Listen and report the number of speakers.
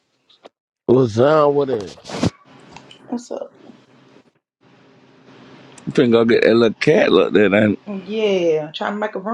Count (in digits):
3